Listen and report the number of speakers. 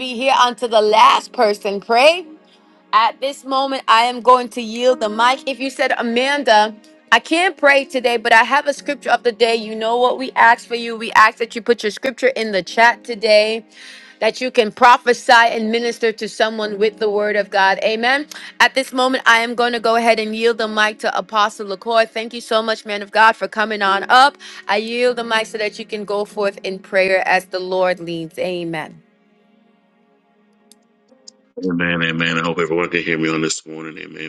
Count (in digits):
2